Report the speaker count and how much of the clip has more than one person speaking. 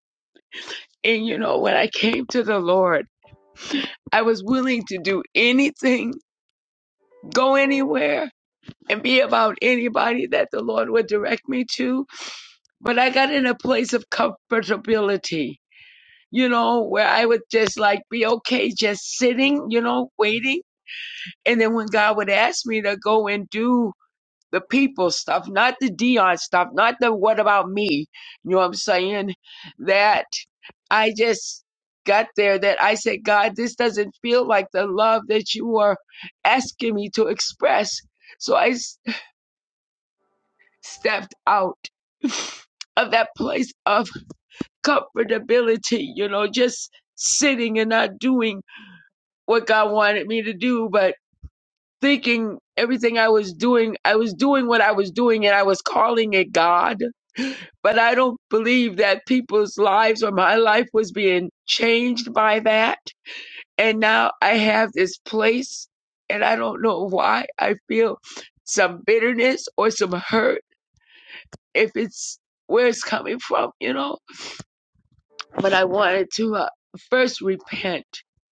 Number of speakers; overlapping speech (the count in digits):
1, no overlap